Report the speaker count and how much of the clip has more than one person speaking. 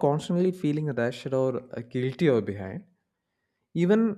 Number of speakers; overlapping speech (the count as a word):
one, no overlap